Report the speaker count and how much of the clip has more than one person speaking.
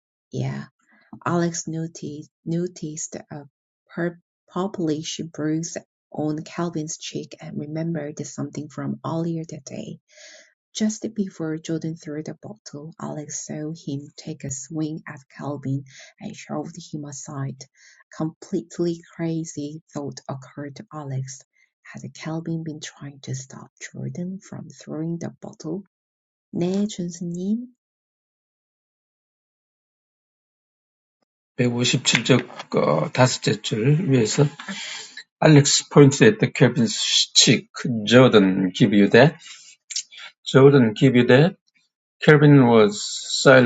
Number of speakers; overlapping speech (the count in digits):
2, no overlap